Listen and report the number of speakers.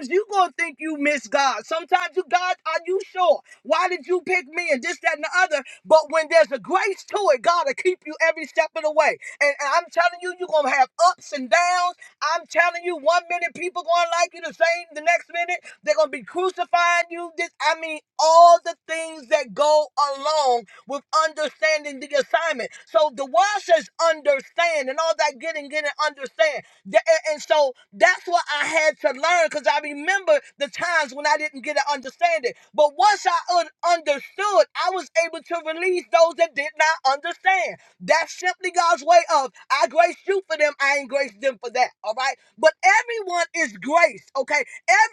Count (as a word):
one